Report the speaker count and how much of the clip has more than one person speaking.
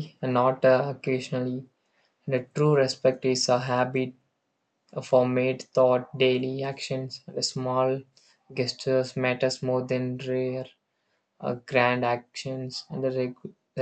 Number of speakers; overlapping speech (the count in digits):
1, no overlap